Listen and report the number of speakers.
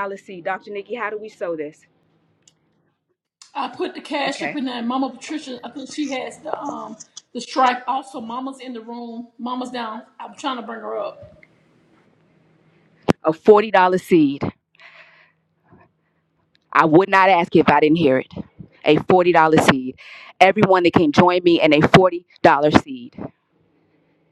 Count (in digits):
2